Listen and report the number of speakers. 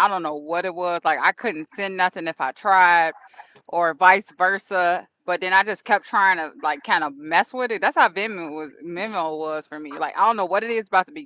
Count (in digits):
1